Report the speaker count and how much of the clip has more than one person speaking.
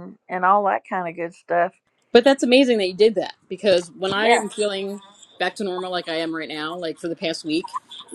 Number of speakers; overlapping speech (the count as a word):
two, about 4%